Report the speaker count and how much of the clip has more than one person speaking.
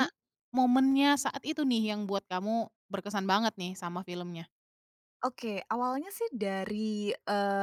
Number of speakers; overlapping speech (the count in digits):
2, no overlap